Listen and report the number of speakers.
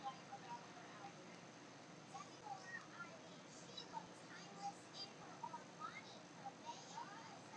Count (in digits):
0